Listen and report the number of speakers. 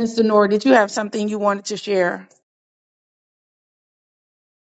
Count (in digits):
1